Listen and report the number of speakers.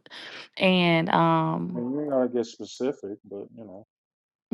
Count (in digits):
2